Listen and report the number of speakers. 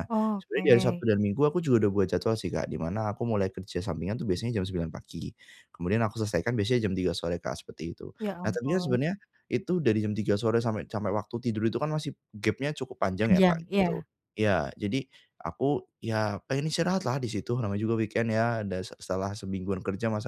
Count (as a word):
two